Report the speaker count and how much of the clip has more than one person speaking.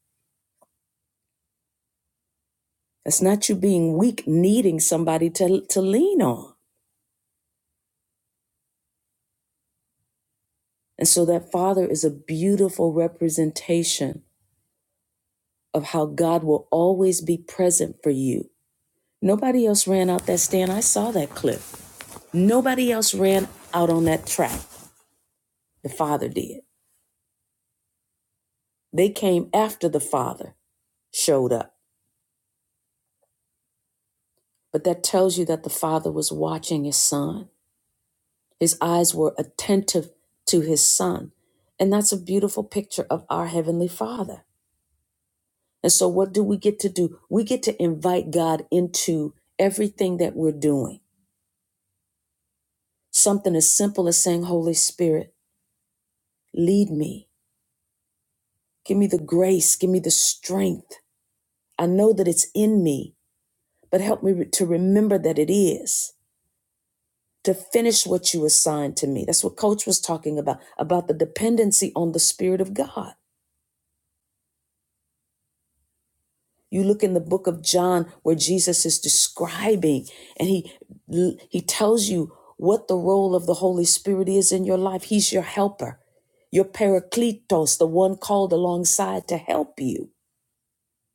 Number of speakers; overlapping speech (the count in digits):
1, no overlap